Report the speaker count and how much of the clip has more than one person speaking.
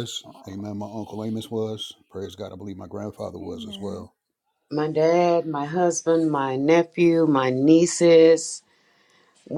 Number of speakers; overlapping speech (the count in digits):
2, no overlap